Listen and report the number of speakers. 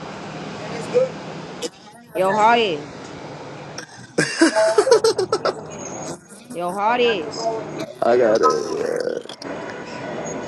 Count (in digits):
3